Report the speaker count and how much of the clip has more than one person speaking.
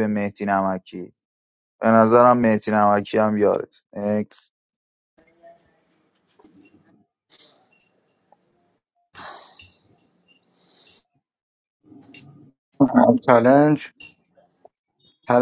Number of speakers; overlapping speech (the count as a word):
two, no overlap